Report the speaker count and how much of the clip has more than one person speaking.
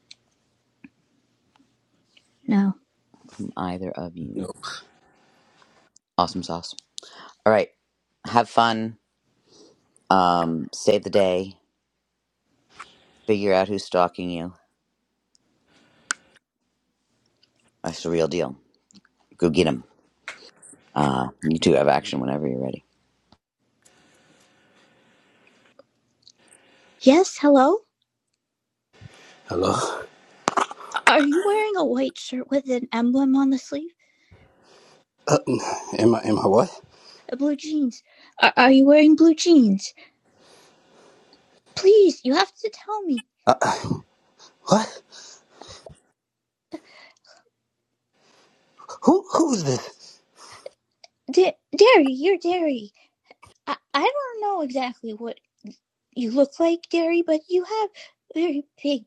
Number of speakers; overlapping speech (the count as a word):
three, under 1%